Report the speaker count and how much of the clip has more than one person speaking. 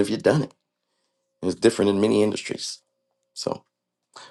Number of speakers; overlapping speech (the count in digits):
1, no overlap